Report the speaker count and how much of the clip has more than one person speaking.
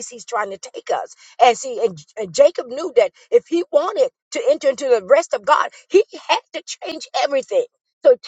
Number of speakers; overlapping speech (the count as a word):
one, no overlap